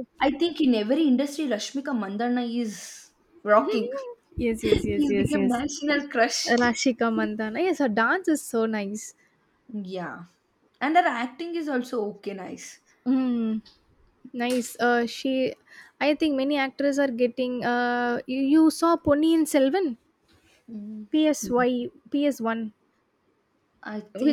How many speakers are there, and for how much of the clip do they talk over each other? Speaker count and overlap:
two, about 4%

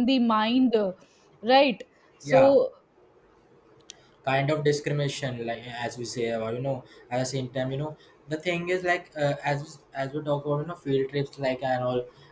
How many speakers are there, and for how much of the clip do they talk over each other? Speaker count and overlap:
two, about 2%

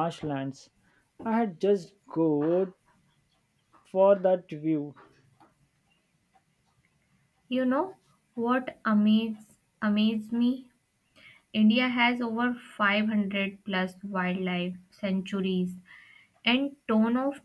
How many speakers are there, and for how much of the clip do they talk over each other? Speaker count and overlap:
two, no overlap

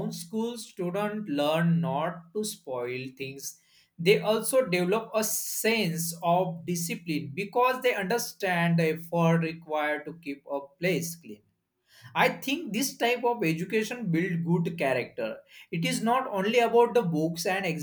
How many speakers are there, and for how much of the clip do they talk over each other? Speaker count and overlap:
one, no overlap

